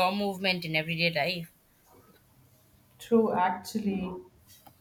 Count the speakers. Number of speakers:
2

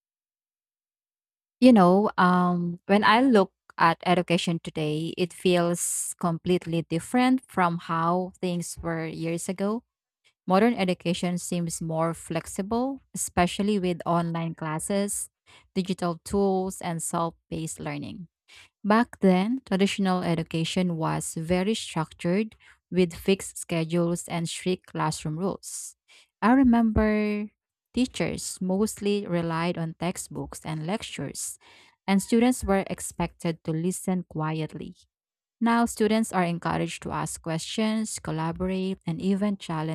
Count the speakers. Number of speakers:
1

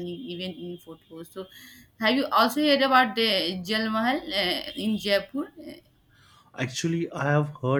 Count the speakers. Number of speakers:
2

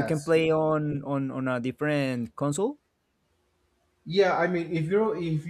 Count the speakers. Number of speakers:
2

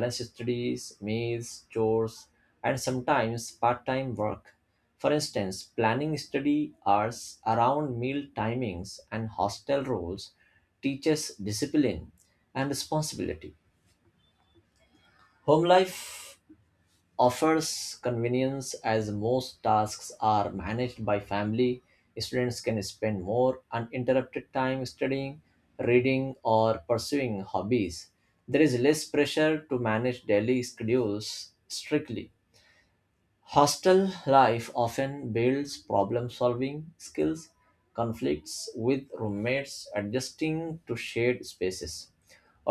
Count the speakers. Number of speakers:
1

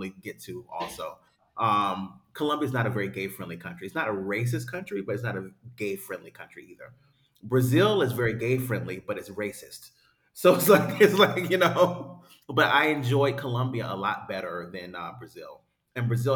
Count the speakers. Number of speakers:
1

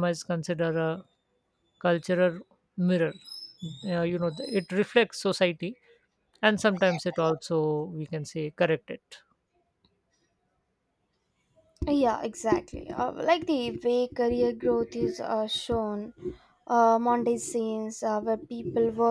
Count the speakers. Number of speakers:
2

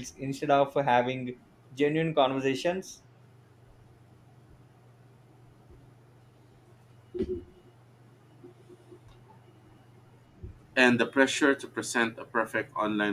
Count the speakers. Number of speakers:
2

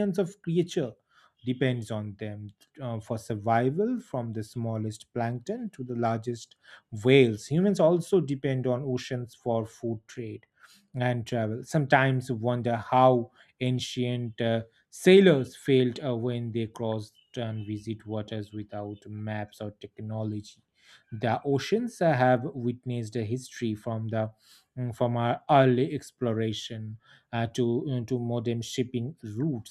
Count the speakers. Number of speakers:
1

